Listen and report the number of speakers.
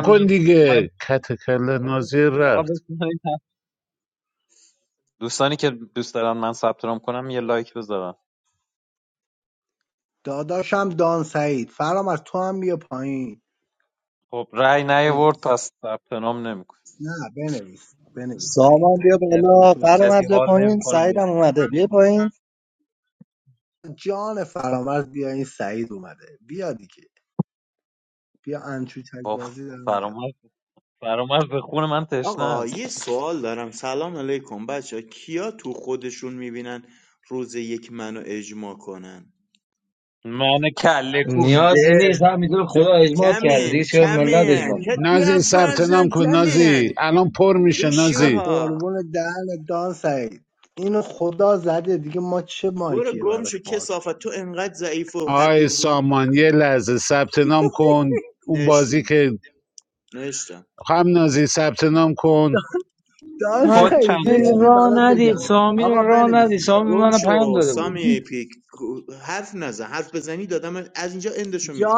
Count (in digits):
6